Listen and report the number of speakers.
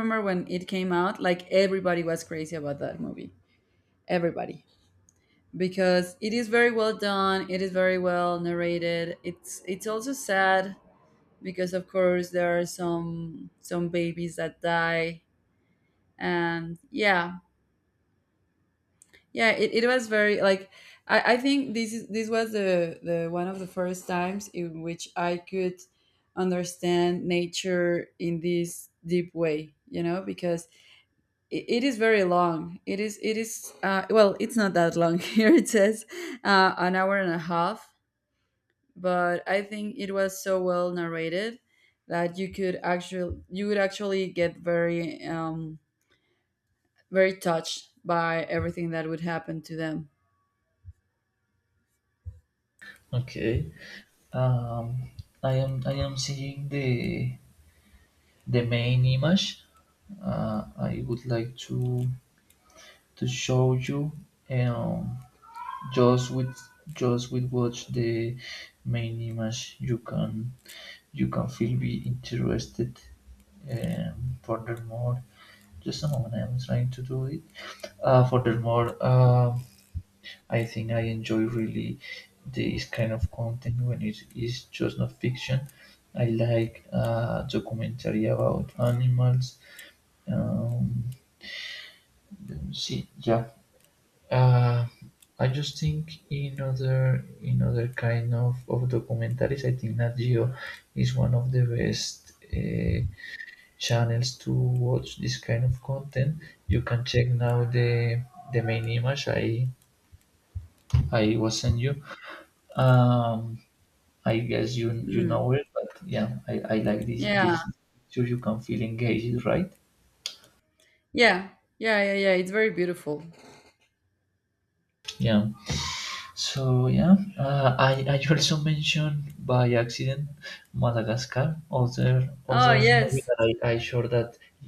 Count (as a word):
two